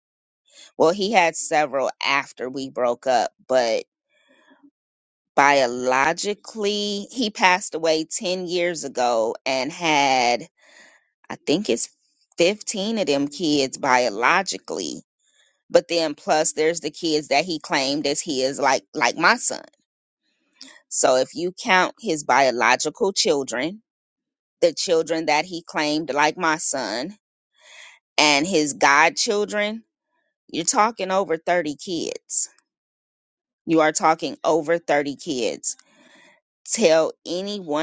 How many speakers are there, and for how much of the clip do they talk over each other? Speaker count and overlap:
1, no overlap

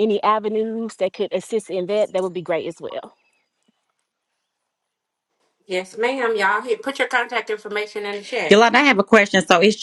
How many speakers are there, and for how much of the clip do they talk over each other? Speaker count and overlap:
3, about 1%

